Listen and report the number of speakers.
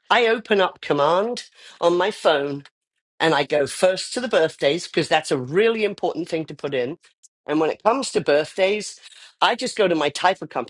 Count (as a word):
one